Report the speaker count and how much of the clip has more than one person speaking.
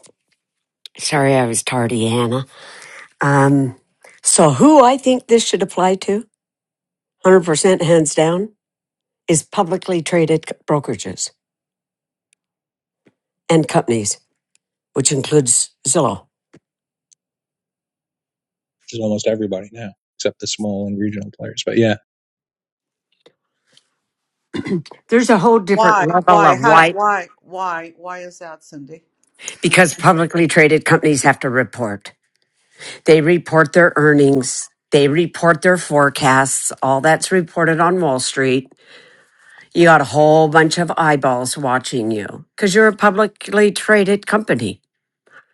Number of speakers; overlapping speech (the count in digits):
3, about 4%